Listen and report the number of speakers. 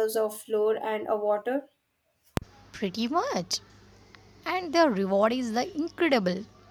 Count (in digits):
2